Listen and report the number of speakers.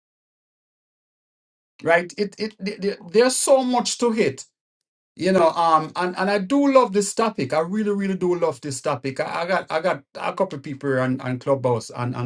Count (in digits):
1